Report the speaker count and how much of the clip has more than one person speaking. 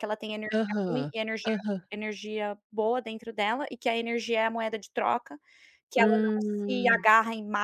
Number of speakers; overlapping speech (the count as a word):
two, about 18%